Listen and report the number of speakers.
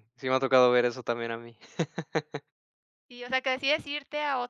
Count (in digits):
2